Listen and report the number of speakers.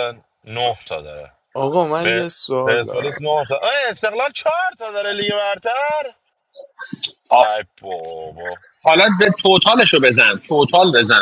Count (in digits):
3